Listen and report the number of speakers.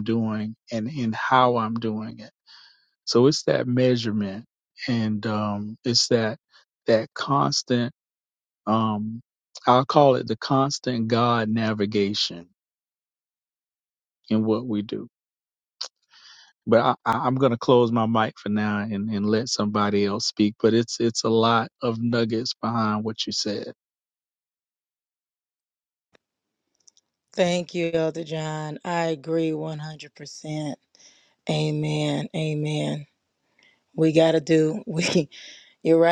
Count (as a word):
two